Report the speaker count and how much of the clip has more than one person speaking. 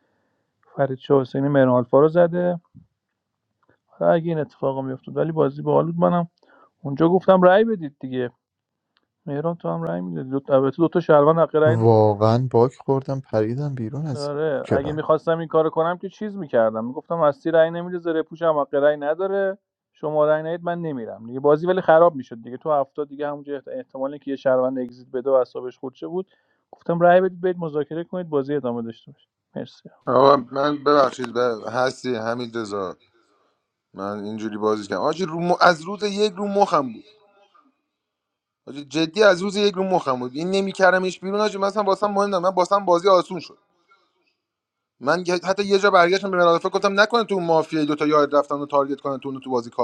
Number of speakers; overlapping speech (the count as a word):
three, about 1%